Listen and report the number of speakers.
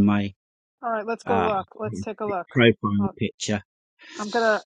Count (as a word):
two